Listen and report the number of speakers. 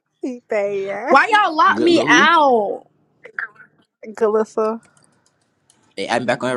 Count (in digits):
3